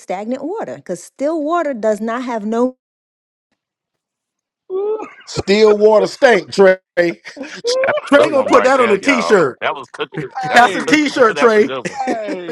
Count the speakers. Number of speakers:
four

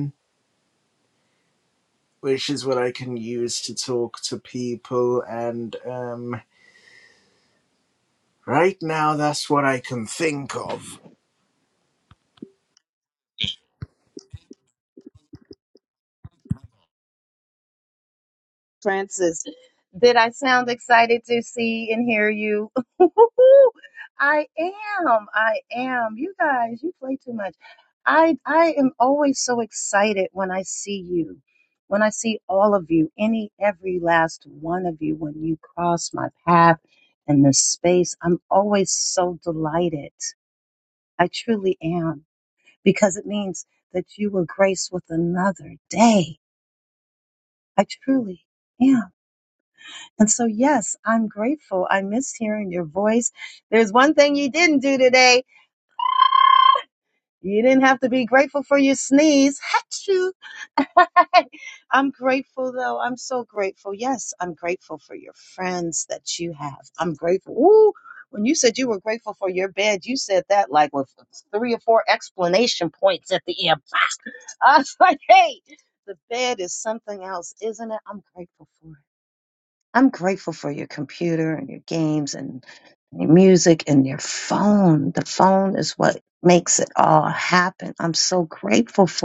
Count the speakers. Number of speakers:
two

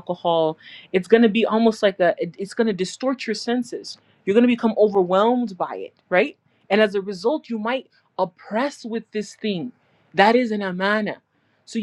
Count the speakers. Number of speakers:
one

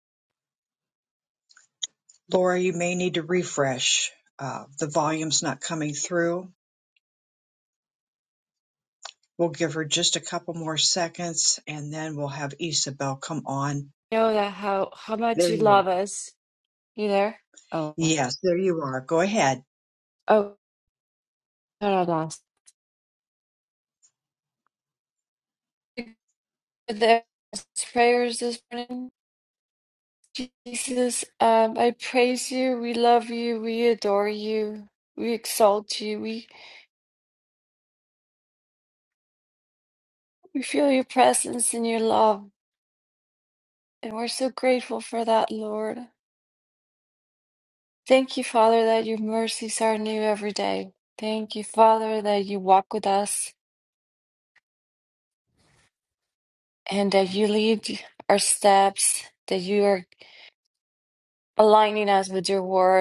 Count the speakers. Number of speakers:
two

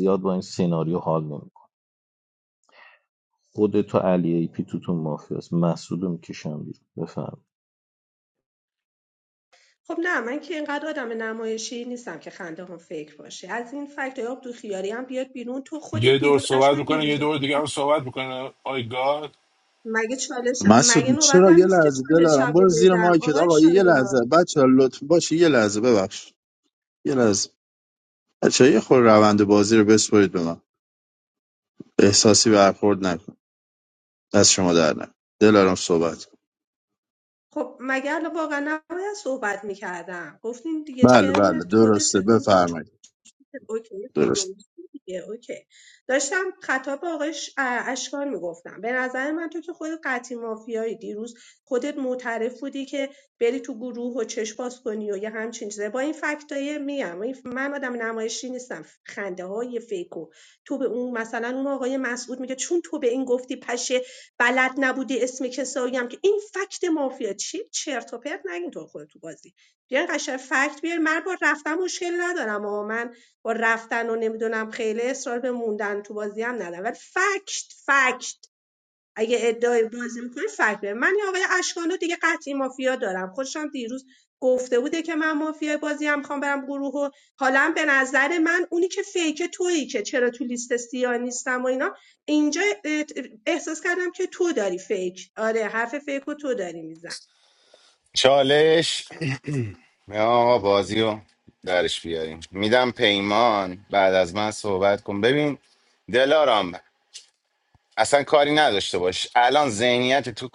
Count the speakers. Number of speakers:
five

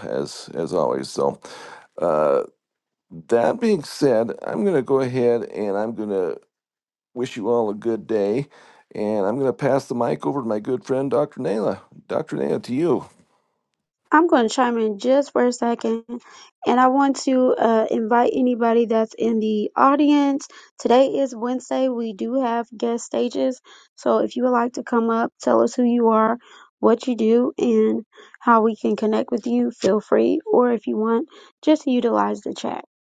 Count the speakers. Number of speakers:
two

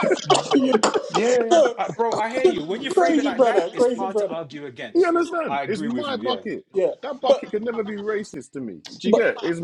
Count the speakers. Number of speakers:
three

